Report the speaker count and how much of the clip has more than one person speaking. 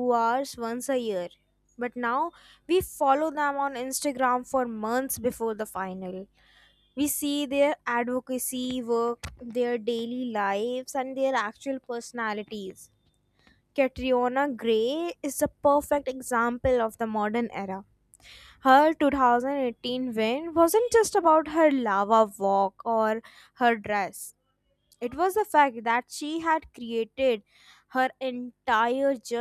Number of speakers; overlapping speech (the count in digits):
1, no overlap